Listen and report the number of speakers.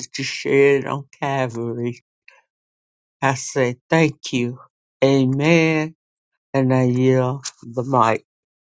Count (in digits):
1